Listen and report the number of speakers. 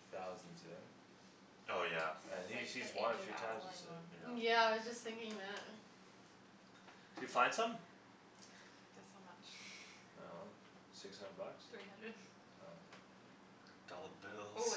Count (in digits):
4